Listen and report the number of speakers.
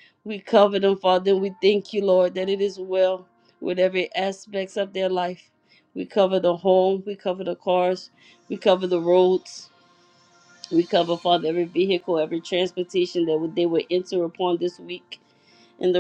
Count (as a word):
one